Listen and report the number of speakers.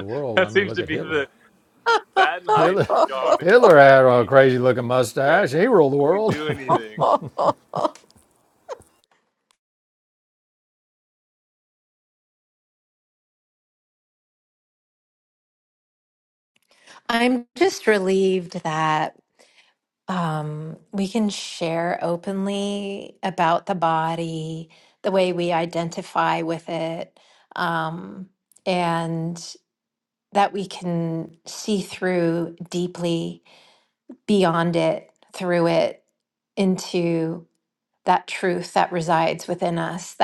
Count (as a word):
three